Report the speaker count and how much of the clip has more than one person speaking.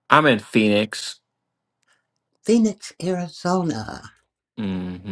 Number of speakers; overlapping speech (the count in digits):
2, no overlap